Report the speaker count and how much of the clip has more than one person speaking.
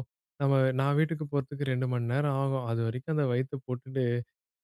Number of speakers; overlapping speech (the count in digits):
1, no overlap